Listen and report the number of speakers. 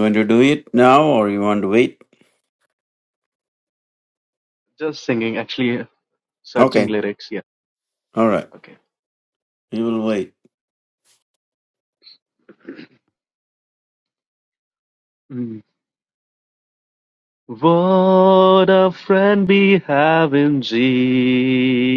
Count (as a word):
two